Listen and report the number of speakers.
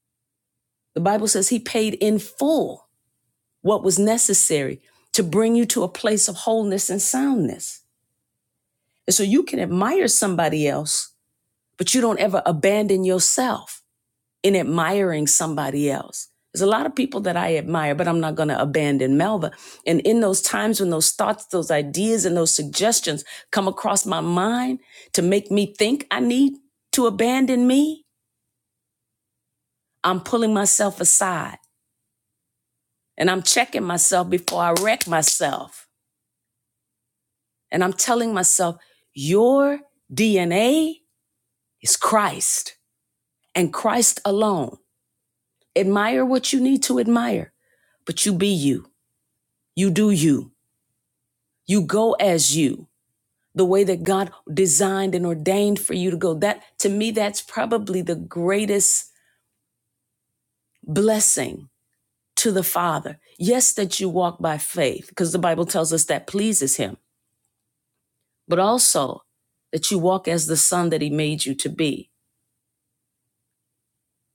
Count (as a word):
one